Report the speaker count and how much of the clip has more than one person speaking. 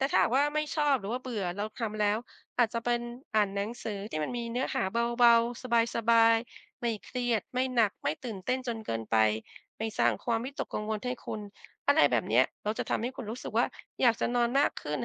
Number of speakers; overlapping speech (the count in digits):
1, no overlap